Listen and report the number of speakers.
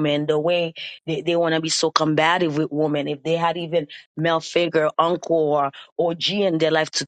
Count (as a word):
one